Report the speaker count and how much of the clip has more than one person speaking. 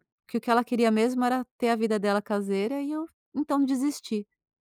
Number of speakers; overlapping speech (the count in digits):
1, no overlap